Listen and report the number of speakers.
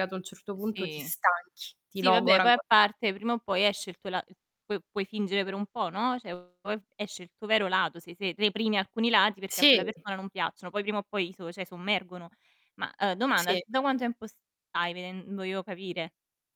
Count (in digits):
2